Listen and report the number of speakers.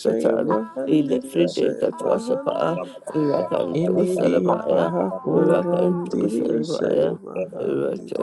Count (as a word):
two